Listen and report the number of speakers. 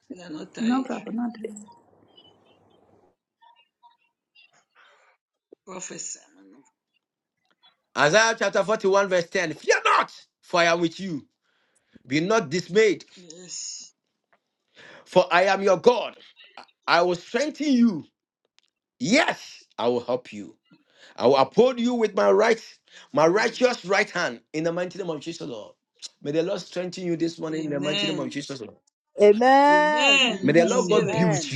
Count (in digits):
4